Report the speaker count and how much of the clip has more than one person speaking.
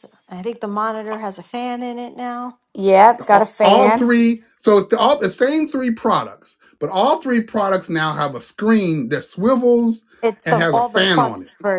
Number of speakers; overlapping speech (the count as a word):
three, about 16%